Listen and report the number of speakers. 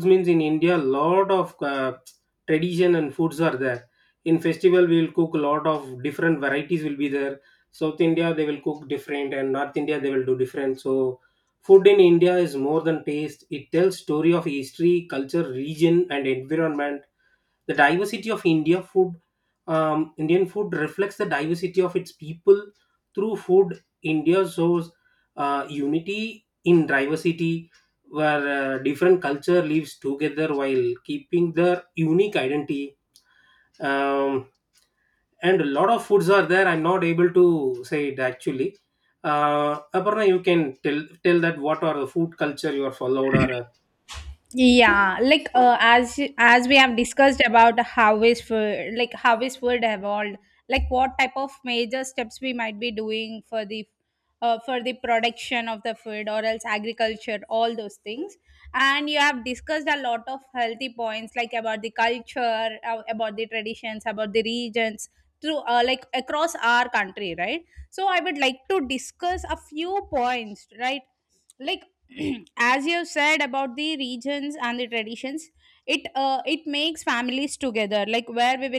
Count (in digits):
2